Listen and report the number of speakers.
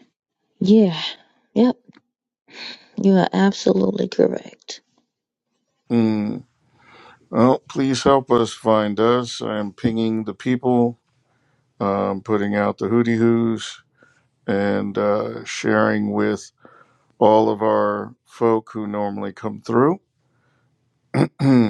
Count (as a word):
two